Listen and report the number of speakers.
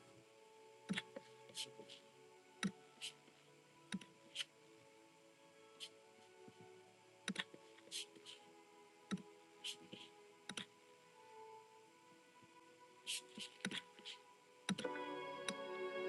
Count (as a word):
zero